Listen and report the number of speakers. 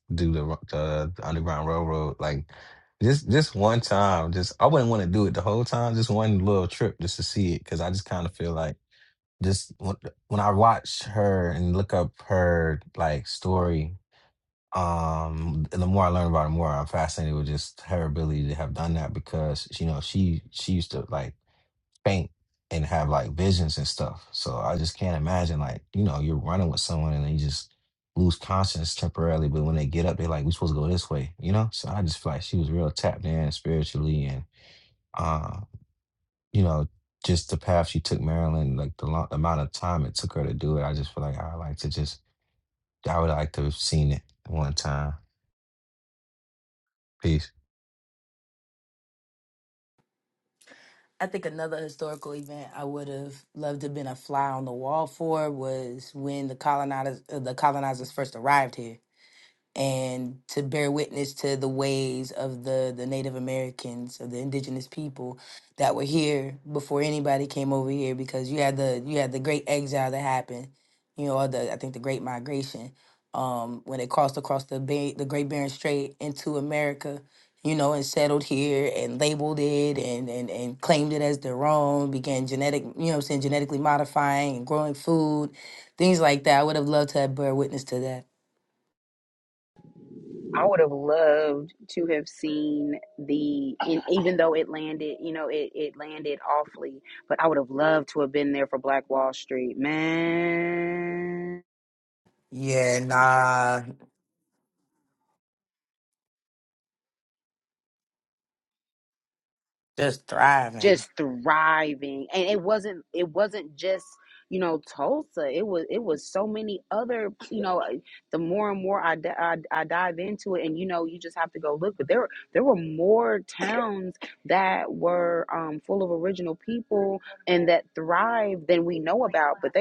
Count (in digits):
3